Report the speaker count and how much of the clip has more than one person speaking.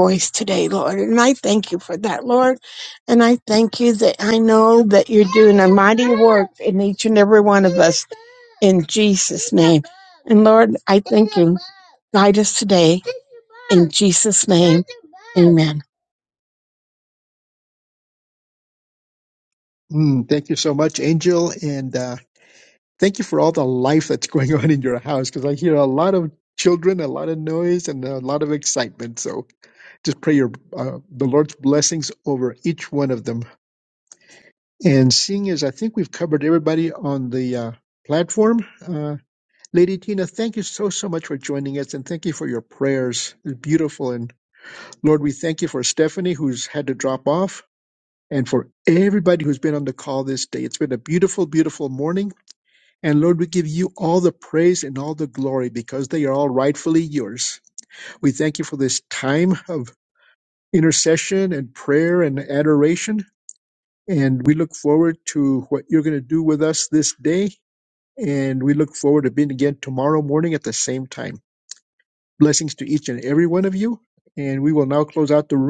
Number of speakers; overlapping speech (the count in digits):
2, no overlap